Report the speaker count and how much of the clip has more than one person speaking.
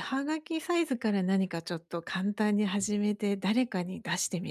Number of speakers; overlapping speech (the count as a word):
one, no overlap